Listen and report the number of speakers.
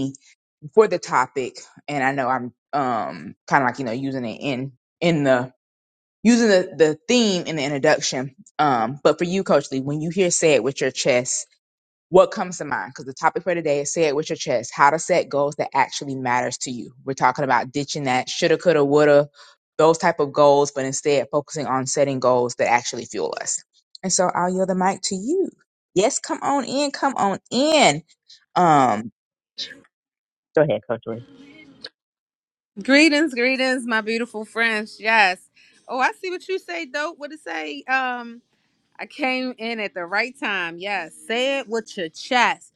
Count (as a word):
two